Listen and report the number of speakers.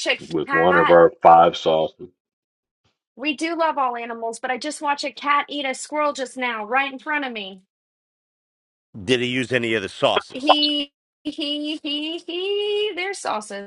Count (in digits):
3